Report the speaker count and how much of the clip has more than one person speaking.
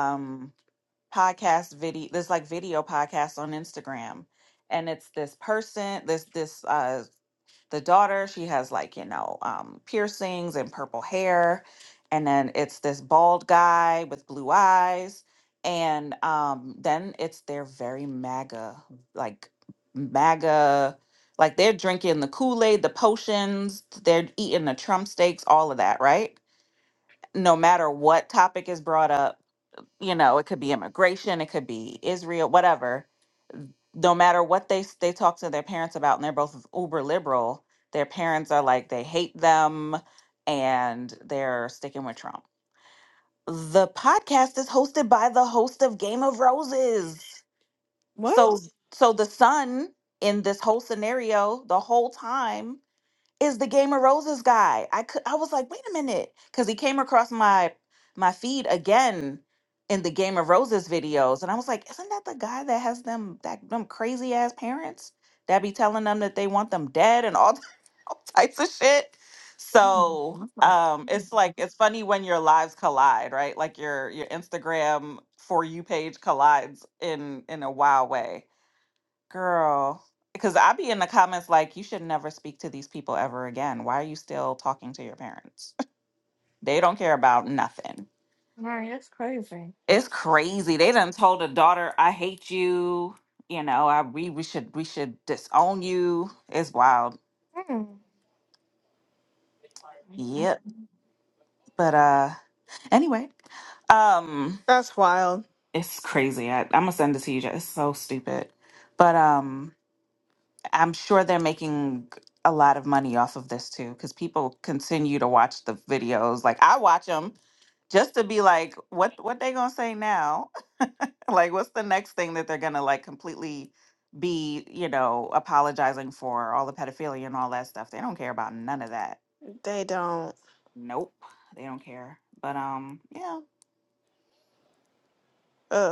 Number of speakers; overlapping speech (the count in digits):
3, under 1%